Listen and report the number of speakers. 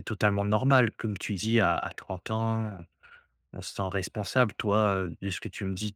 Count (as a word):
one